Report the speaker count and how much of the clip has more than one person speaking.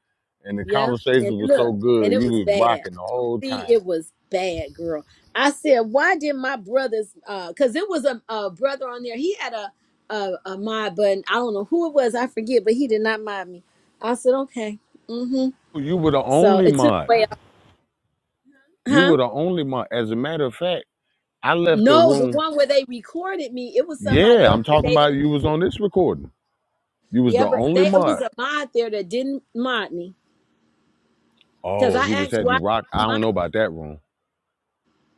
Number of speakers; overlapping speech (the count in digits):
2, about 20%